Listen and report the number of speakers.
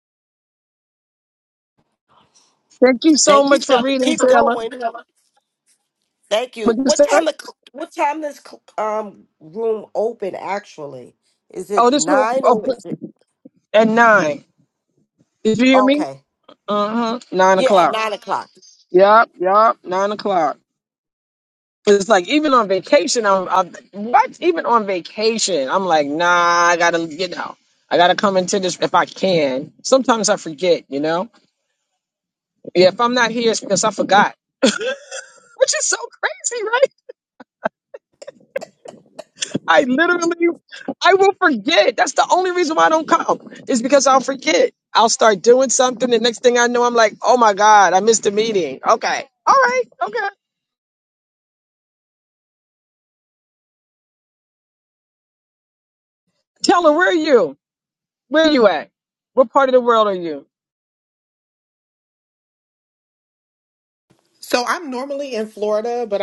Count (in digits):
3